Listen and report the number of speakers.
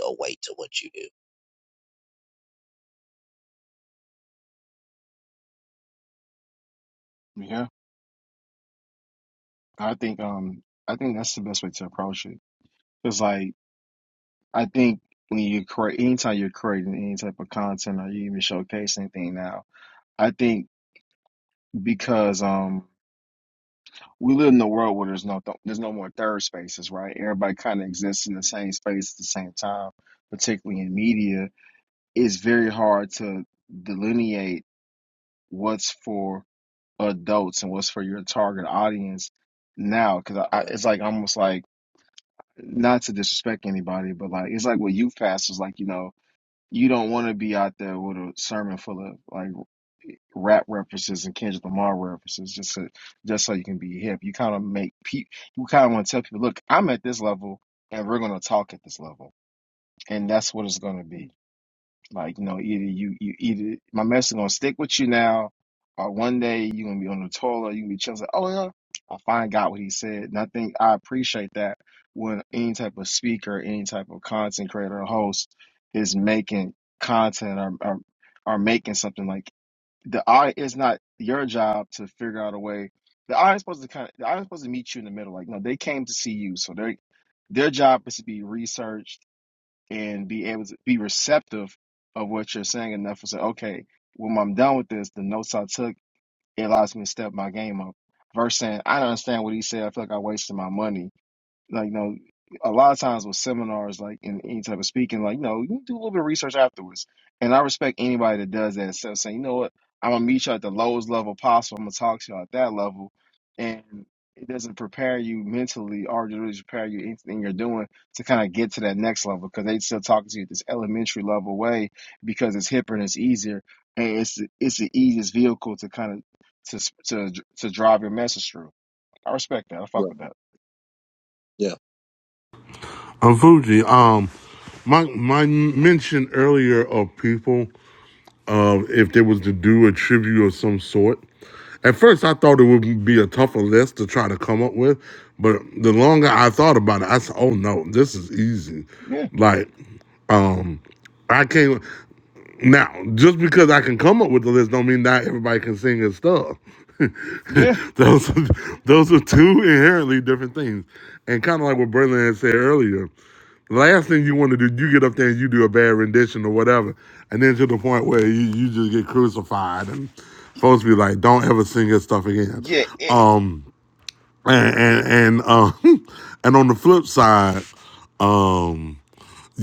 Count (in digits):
3